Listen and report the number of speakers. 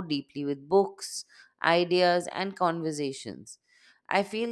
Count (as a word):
one